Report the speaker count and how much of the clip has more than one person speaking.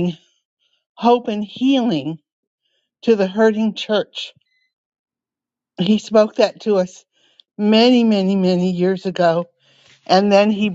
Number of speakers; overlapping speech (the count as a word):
one, no overlap